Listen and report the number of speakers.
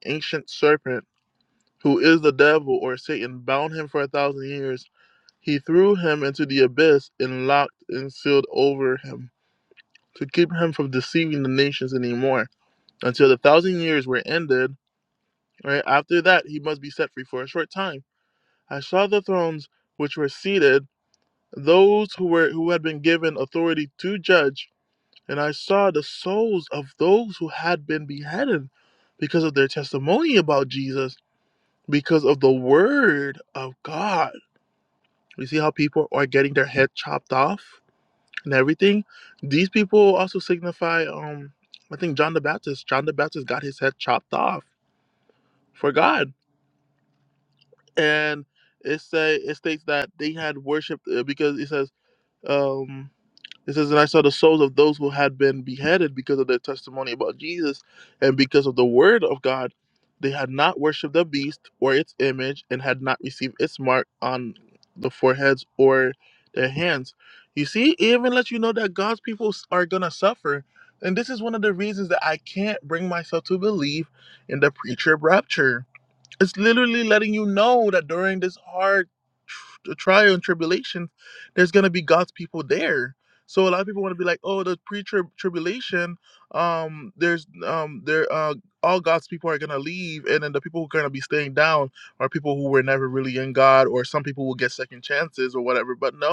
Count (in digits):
1